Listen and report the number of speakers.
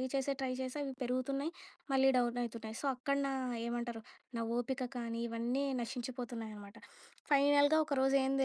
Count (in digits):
1